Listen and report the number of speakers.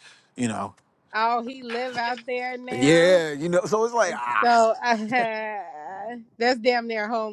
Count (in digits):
2